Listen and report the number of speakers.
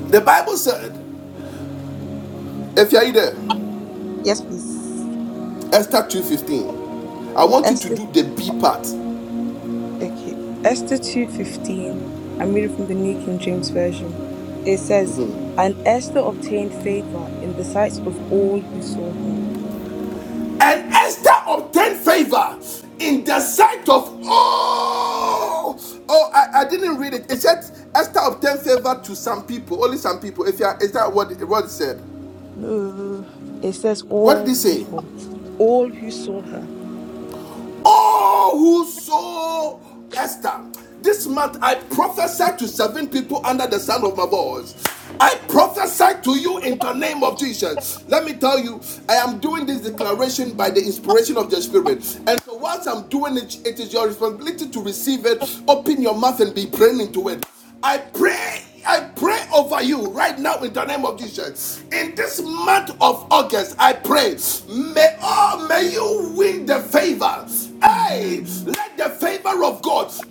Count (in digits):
2